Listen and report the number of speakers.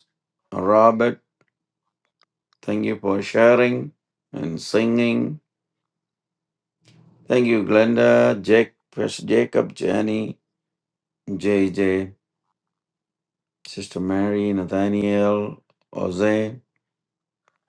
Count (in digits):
1